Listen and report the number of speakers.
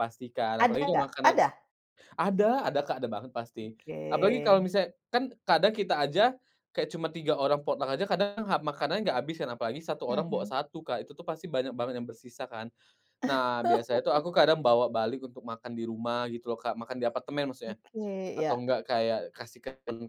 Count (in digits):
2